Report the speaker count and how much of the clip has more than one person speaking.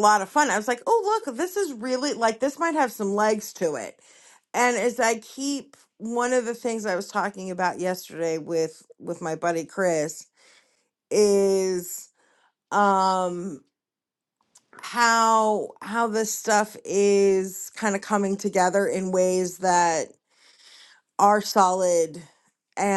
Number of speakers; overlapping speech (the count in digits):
1, no overlap